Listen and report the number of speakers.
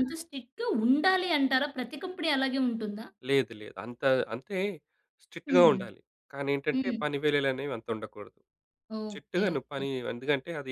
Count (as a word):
two